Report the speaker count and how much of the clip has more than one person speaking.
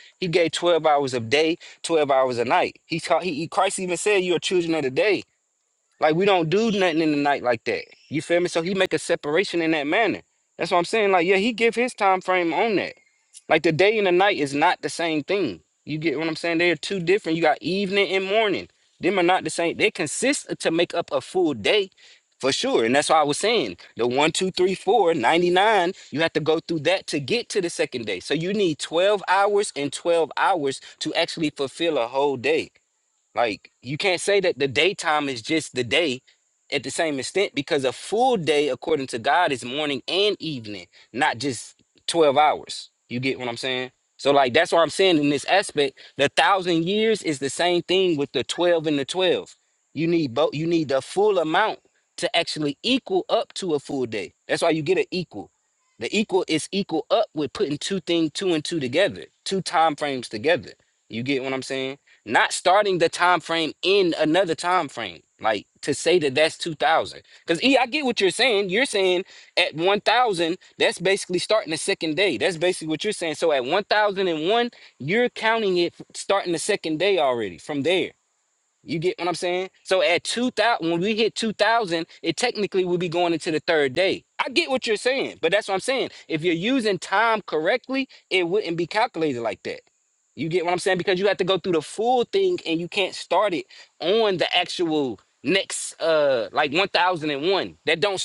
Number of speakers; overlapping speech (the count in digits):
1, no overlap